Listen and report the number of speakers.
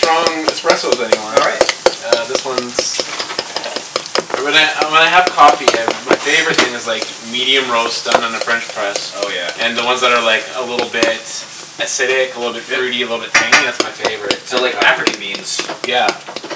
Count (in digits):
2